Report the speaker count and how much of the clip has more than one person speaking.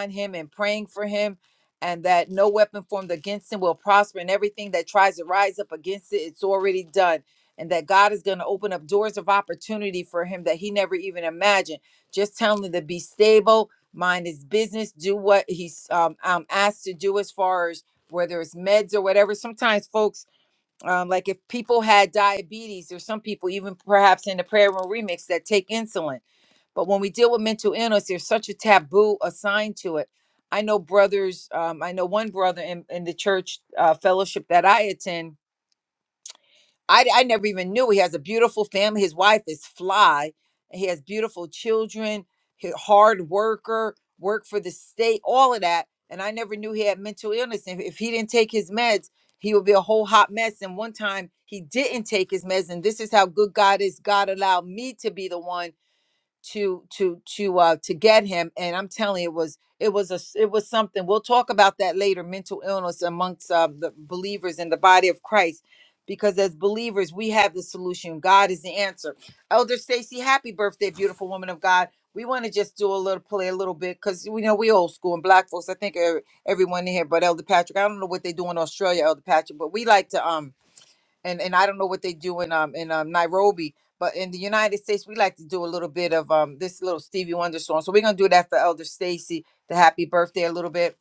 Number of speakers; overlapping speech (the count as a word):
one, no overlap